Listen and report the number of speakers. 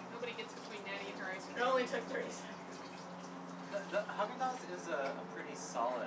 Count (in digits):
3